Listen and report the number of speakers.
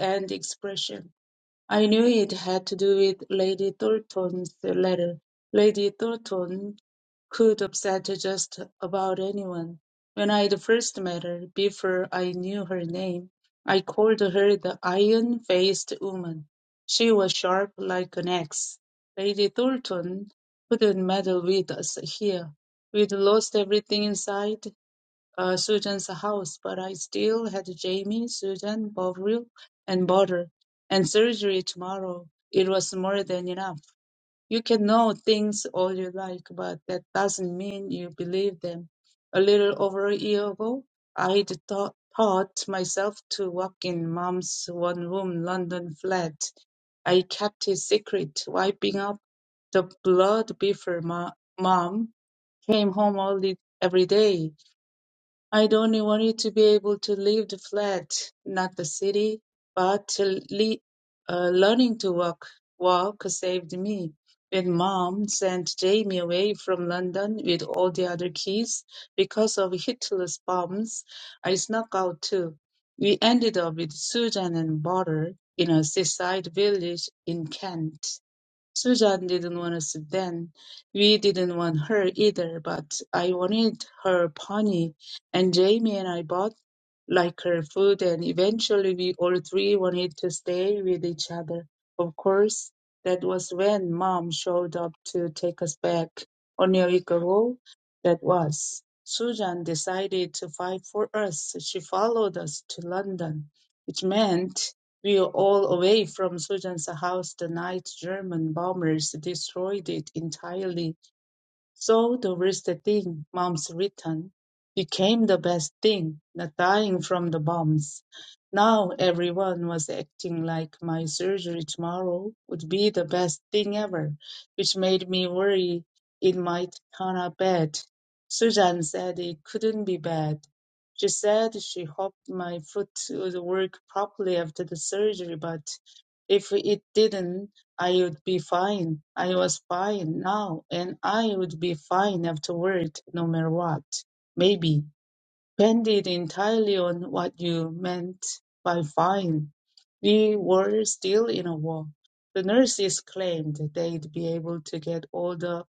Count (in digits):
1